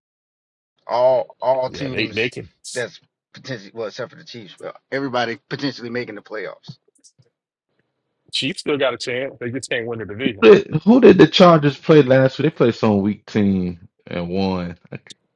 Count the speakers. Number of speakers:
three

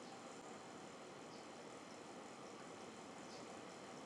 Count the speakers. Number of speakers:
zero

